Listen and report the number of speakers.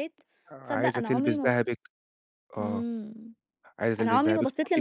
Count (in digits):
2